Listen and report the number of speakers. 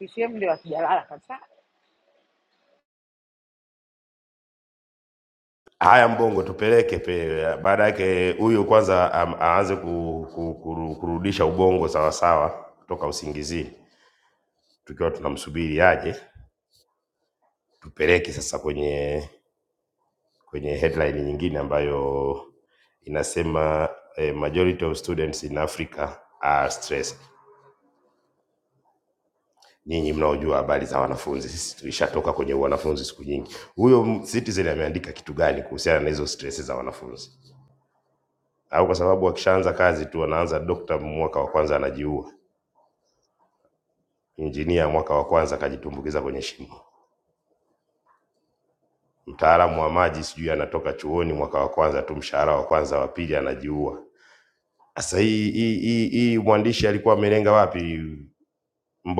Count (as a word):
two